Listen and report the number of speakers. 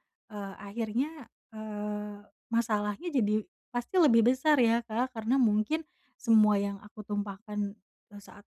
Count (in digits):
1